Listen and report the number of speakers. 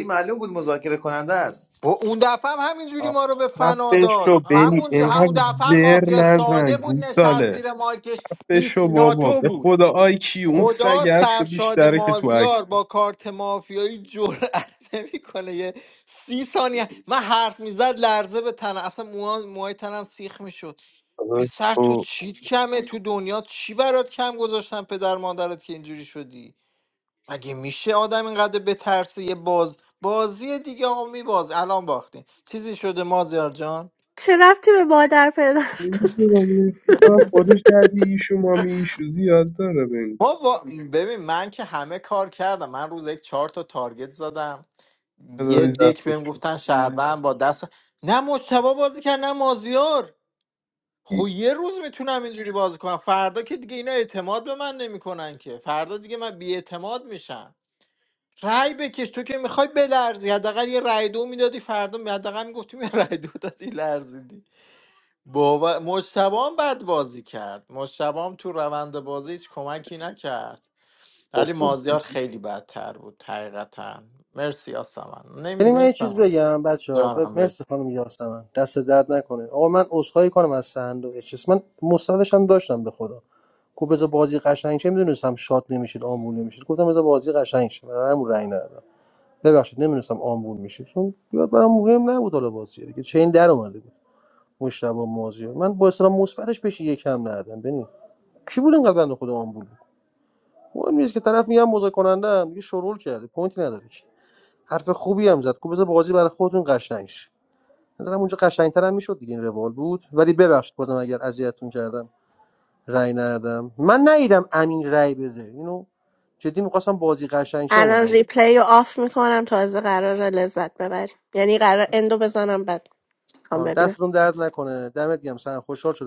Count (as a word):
five